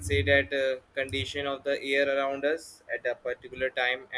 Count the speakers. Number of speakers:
1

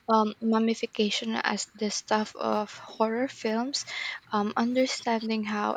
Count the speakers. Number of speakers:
1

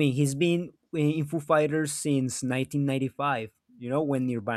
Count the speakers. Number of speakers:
1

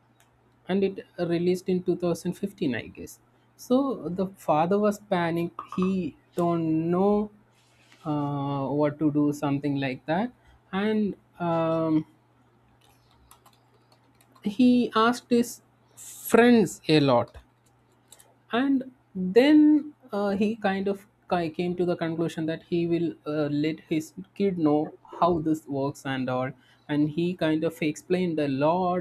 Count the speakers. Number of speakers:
1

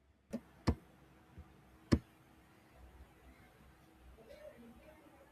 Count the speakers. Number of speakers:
0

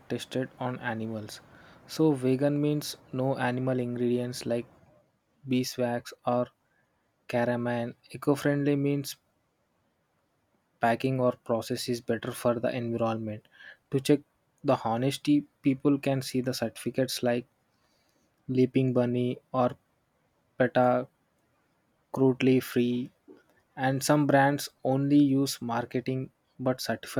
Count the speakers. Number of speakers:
1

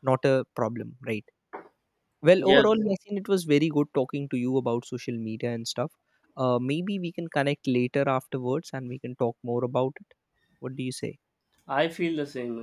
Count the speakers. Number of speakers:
2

